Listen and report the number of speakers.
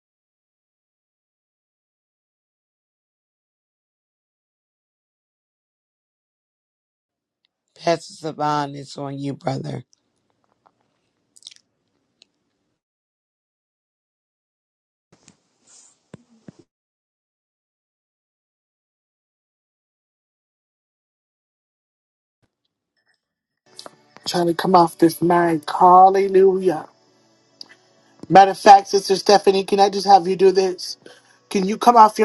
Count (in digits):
2